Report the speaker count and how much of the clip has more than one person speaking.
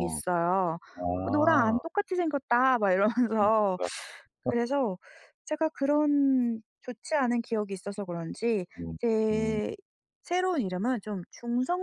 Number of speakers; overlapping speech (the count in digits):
2, about 13%